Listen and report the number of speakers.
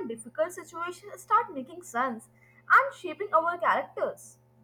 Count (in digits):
1